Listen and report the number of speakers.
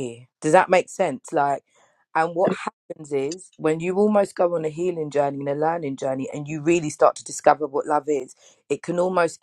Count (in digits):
1